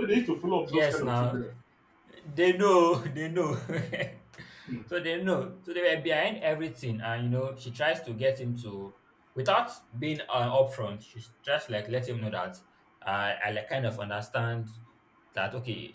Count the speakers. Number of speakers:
two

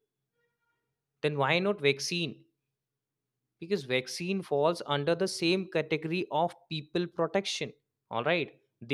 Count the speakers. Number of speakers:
one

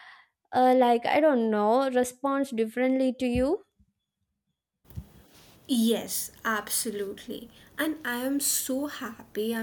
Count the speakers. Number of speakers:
two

